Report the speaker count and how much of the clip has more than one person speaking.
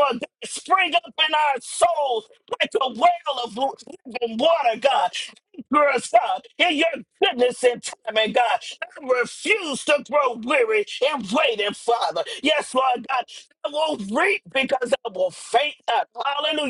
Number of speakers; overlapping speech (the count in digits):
1, no overlap